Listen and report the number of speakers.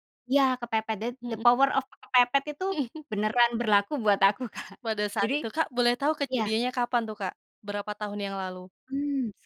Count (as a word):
two